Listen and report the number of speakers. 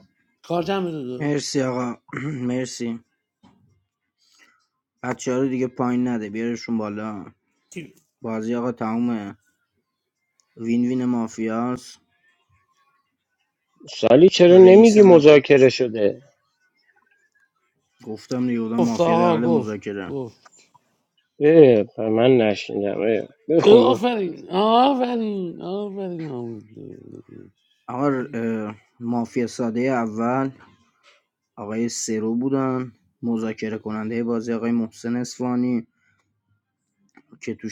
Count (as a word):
three